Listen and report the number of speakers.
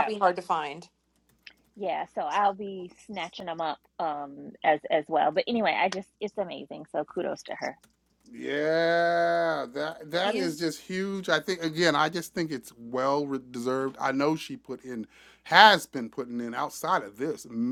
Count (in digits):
3